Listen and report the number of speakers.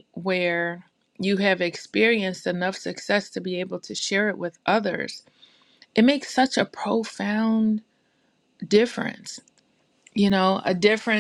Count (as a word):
one